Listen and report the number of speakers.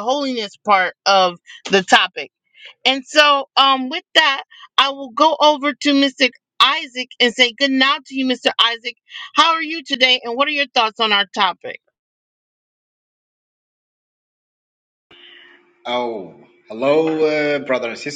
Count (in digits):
2